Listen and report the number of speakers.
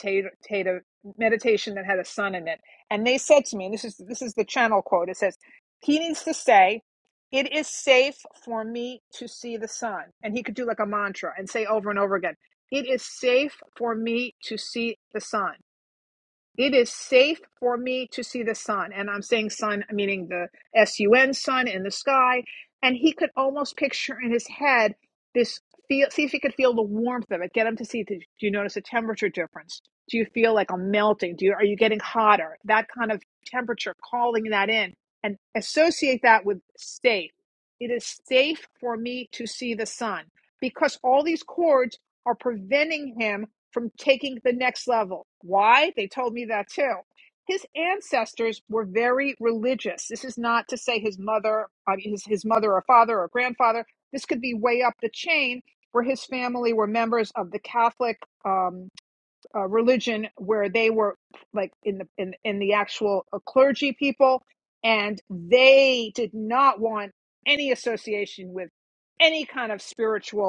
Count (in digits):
1